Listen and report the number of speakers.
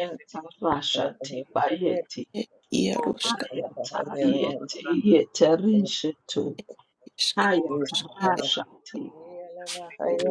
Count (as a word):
three